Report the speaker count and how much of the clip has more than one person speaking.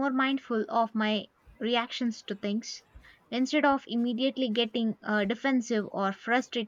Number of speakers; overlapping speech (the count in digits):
1, no overlap